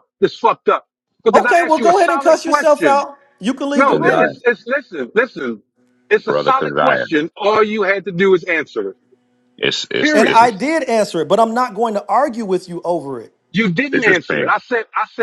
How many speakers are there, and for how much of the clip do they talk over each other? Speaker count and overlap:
3, about 28%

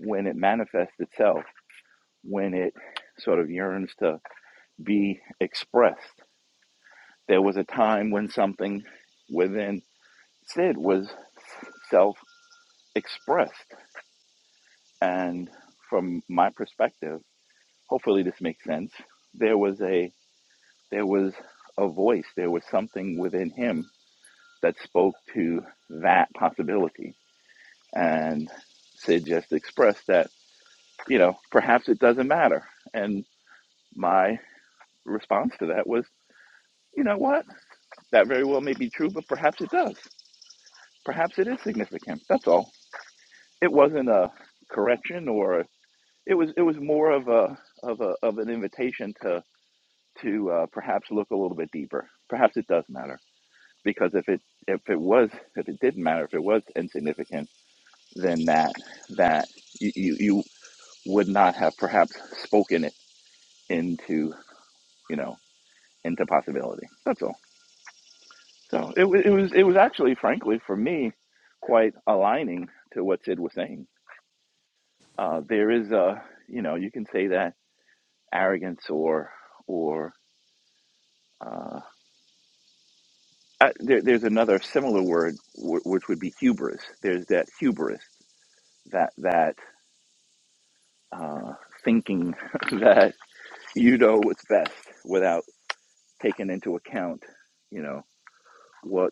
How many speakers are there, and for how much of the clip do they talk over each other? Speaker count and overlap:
1, no overlap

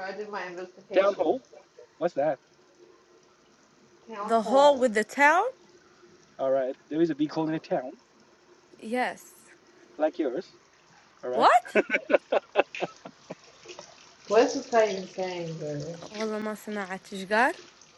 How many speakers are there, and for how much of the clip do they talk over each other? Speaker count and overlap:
3, about 5%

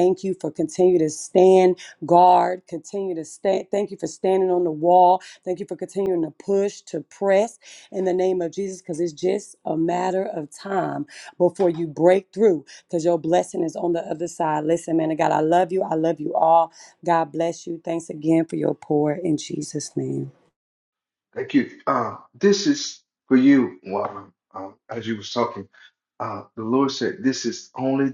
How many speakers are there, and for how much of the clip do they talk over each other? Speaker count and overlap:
2, no overlap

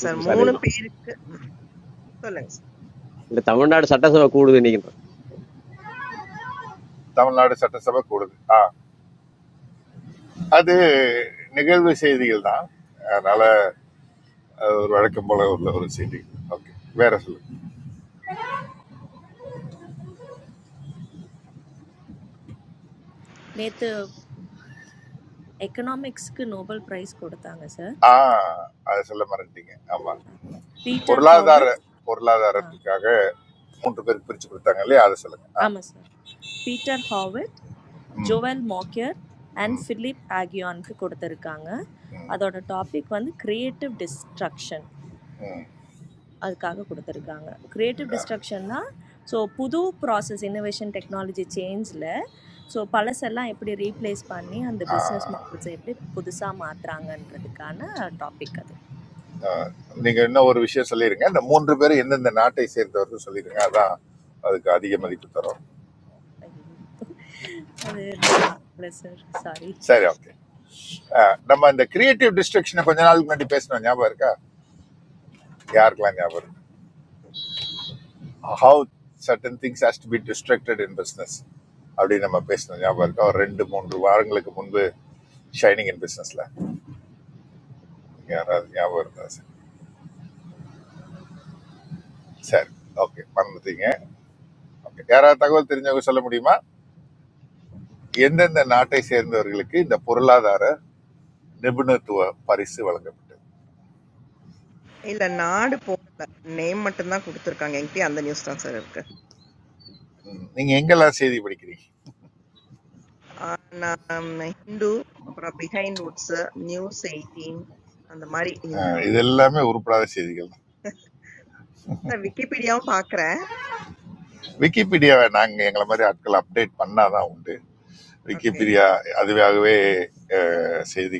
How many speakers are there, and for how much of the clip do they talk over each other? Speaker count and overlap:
4, about 2%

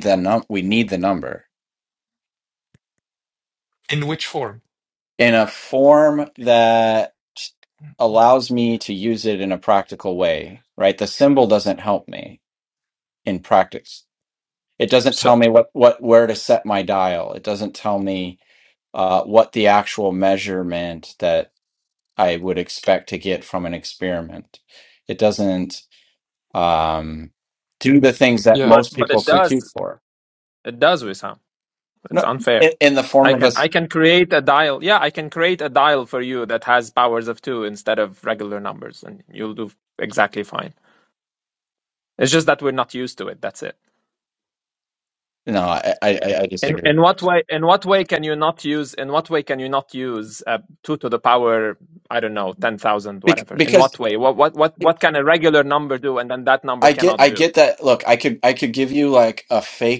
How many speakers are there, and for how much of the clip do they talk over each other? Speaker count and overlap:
3, about 6%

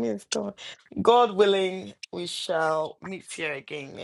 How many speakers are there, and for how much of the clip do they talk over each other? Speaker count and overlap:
1, no overlap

